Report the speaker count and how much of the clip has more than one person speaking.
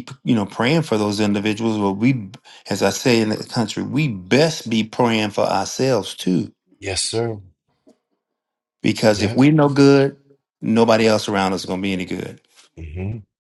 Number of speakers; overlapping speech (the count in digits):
2, about 2%